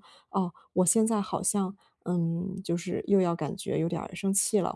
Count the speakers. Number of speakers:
one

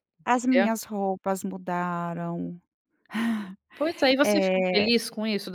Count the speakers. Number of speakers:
two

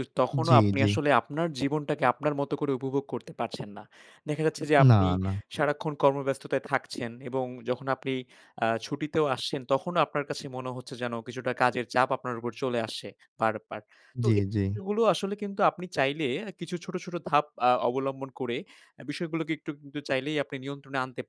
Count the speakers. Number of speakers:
two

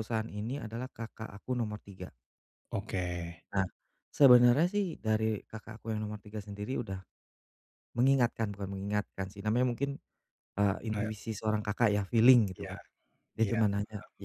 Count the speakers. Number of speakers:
two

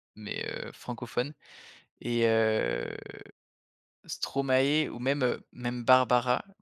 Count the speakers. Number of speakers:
one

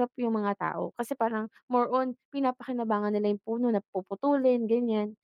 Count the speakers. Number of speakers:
one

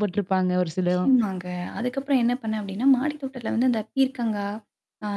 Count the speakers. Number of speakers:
two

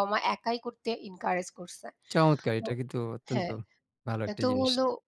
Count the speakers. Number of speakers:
two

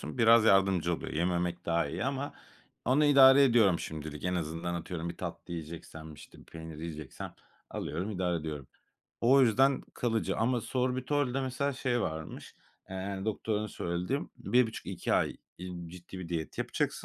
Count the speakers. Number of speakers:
one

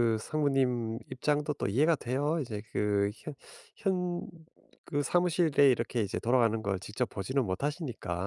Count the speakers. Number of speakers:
one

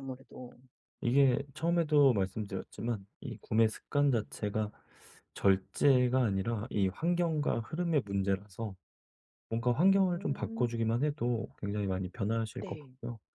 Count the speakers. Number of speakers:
two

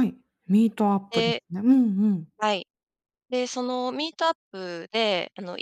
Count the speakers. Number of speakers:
two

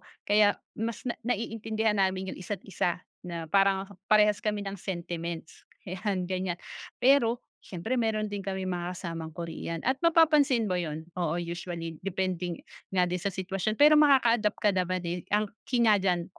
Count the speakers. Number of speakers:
one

